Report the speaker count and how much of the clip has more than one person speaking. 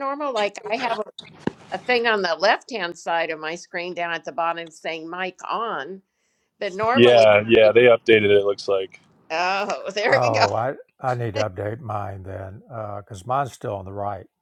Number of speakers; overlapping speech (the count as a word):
three, about 6%